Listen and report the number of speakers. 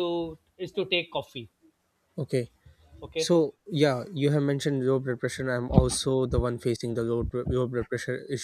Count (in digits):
2